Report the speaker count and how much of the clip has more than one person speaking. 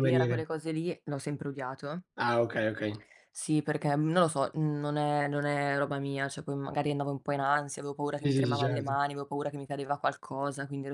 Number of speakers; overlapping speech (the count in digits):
2, about 10%